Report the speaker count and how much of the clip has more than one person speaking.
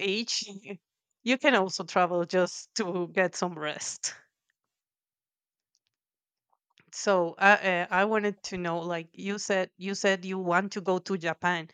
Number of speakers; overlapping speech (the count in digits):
1, no overlap